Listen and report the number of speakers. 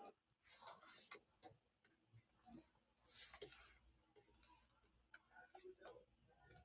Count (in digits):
0